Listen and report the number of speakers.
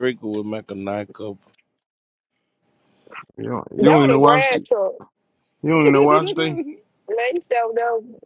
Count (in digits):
3